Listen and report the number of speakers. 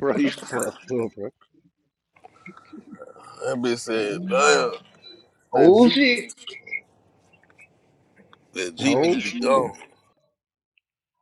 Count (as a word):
three